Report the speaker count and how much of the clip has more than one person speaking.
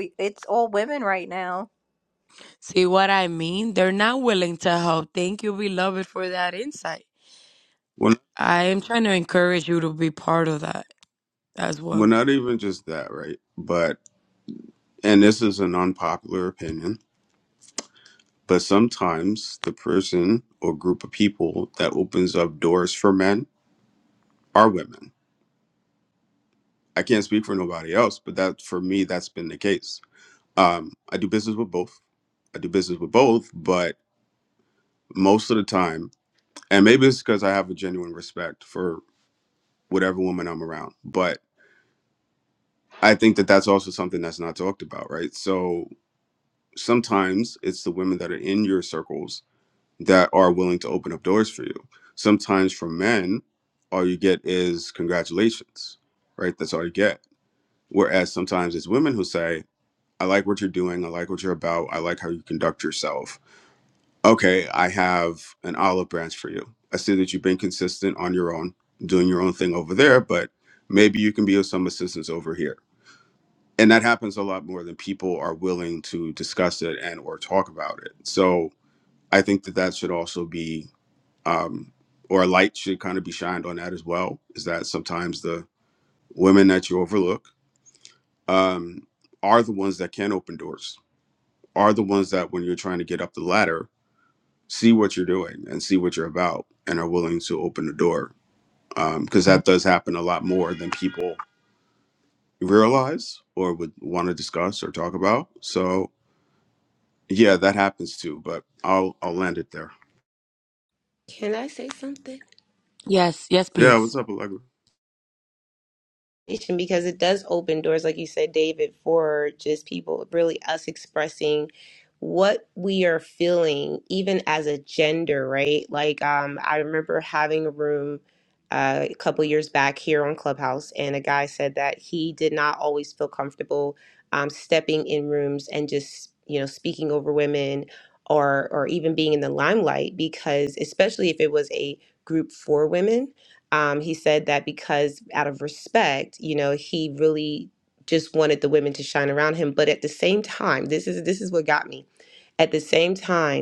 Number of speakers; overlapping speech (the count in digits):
4, under 1%